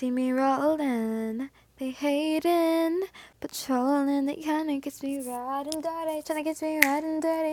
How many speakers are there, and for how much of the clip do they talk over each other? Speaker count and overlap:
one, no overlap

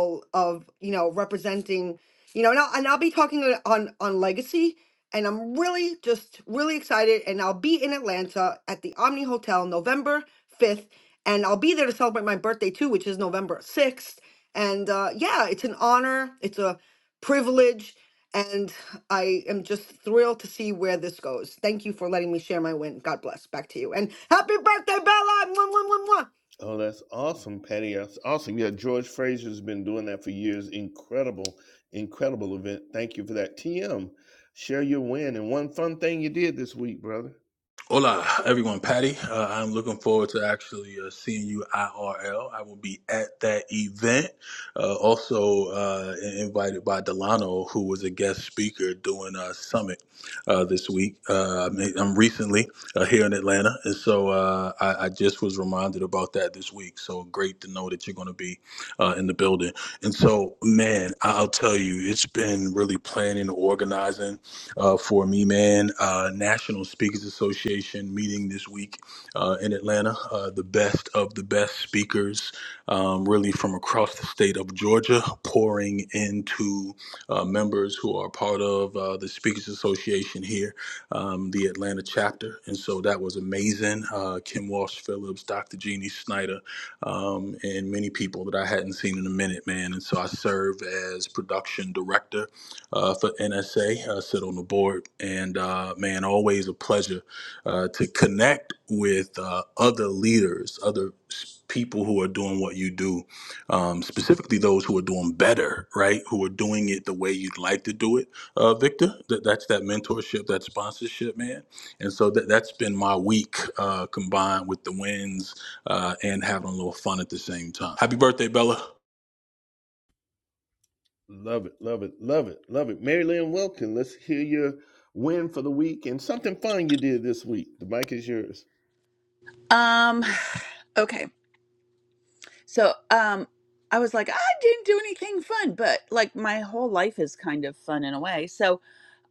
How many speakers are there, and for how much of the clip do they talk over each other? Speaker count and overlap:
four, no overlap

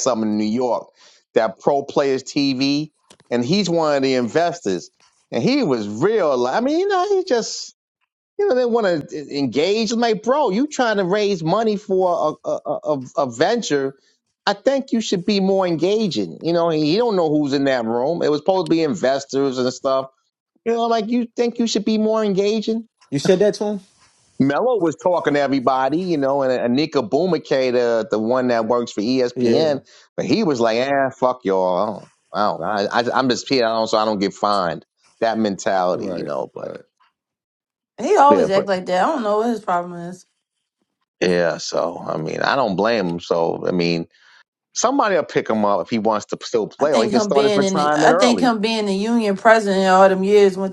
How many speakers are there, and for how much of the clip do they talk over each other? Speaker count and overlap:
three, about 6%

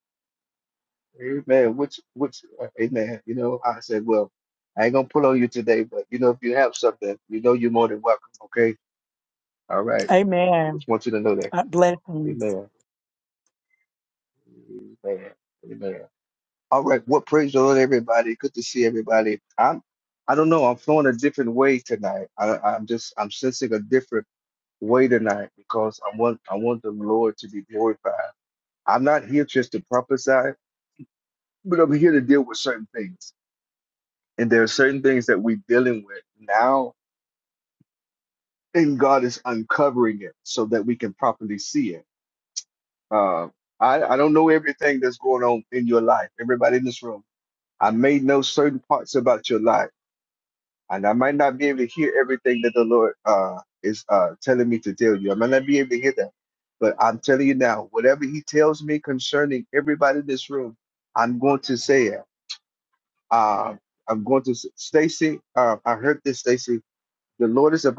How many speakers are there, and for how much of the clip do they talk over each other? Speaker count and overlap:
two, under 1%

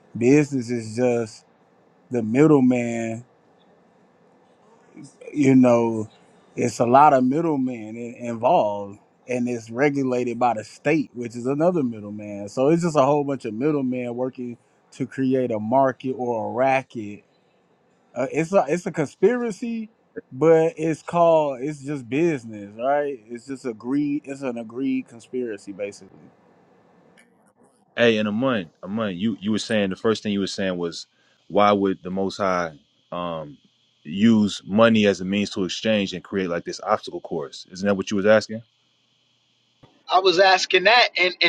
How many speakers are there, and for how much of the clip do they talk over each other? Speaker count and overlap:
three, no overlap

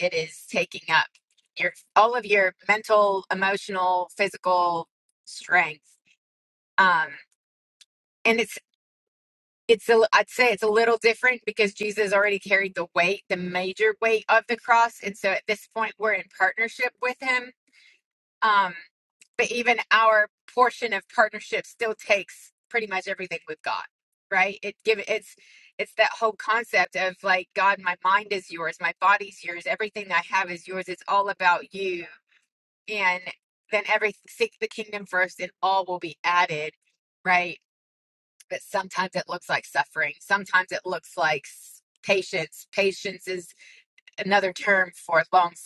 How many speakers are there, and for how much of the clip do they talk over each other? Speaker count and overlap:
one, no overlap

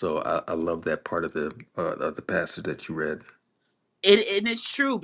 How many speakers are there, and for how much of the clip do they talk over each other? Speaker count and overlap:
two, no overlap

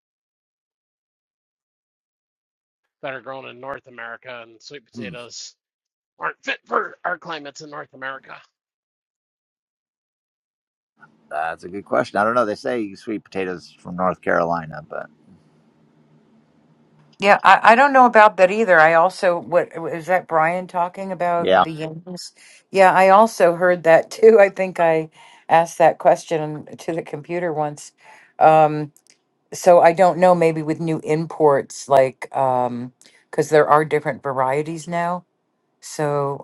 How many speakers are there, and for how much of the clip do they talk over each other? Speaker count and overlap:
three, about 1%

